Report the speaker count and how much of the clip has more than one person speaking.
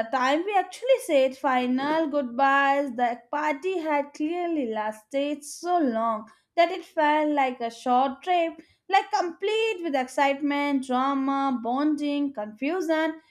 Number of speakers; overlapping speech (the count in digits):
1, no overlap